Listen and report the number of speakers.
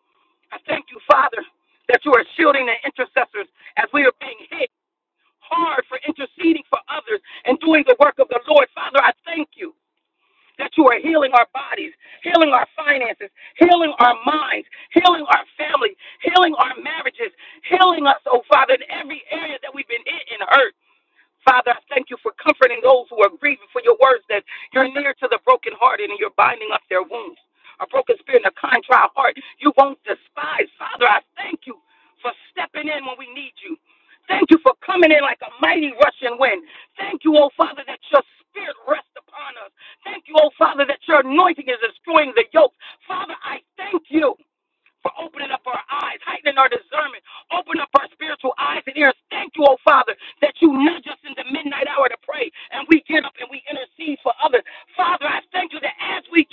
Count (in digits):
1